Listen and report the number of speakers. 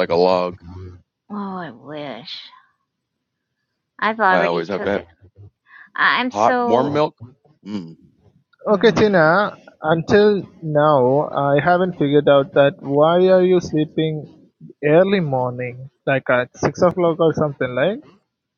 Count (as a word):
three